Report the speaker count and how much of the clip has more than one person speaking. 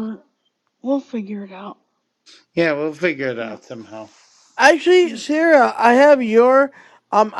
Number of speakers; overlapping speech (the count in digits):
3, about 6%